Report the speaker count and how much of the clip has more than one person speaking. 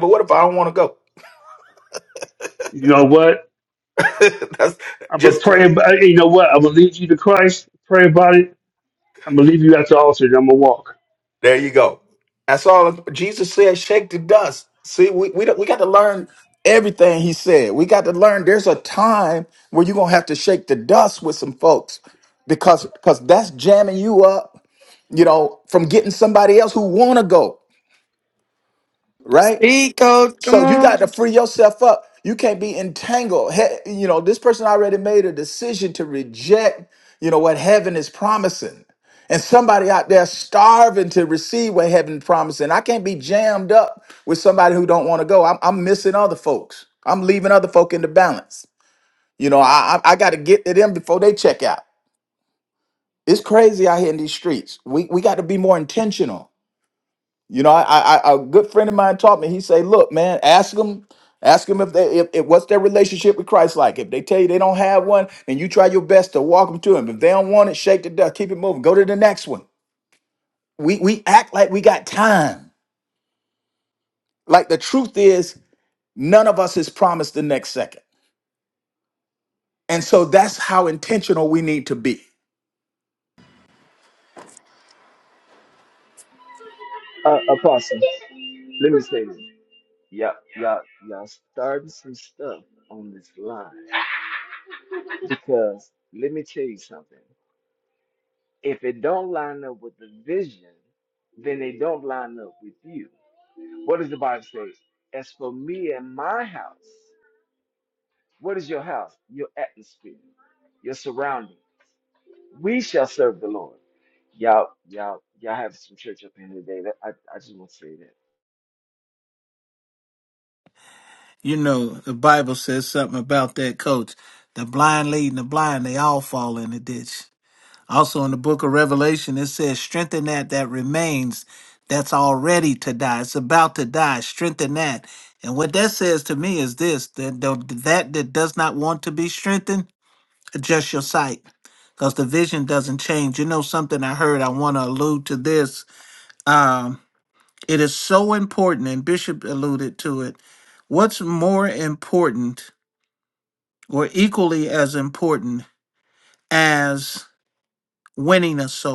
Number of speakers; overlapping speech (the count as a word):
five, about 1%